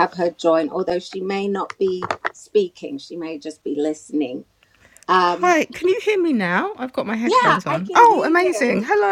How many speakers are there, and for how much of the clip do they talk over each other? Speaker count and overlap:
2, about 21%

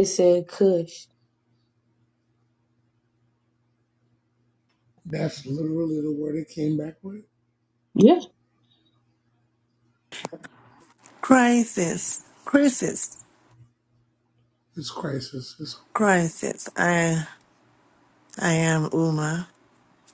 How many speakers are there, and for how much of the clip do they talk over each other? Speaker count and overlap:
3, no overlap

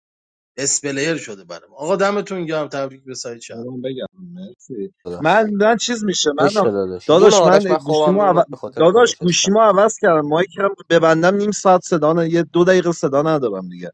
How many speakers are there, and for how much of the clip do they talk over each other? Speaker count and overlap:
3, about 17%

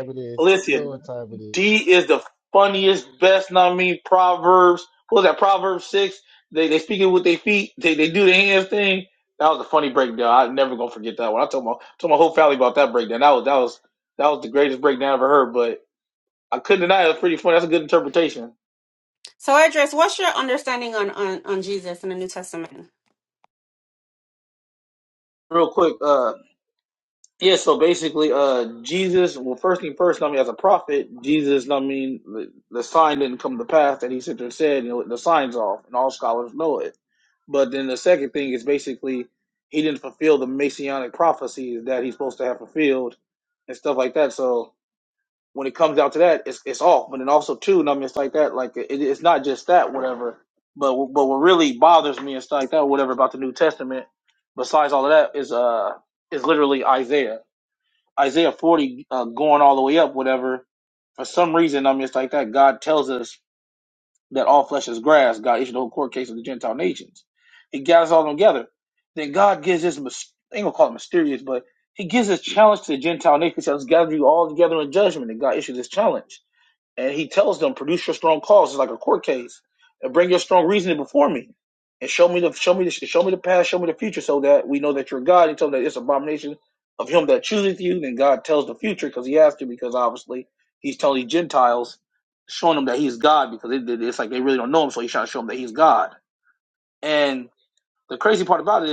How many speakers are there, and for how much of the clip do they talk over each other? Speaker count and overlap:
3, under 1%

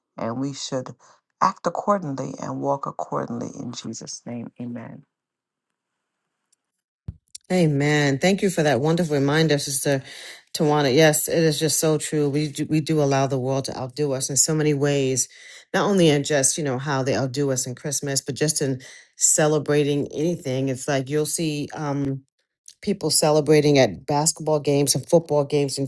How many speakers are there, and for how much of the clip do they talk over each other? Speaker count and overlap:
2, no overlap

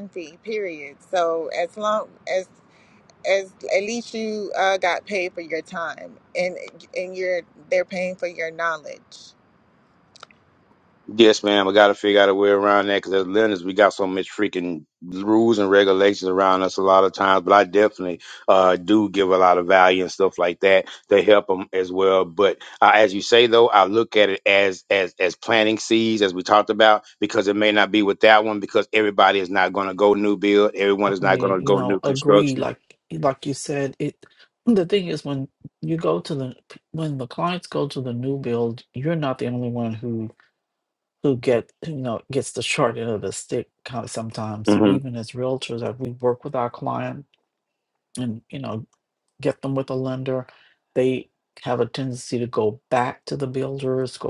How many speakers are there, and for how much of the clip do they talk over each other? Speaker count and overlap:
3, about 3%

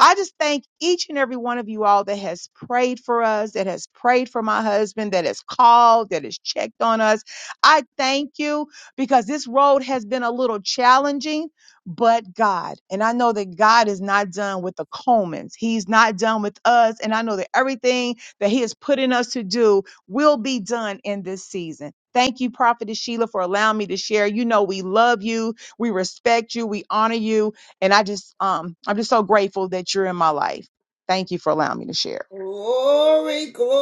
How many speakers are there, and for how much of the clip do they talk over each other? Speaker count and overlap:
2, no overlap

